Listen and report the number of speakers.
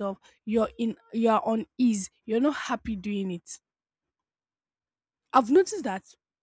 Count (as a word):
one